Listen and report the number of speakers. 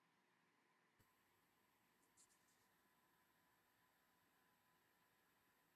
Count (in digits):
0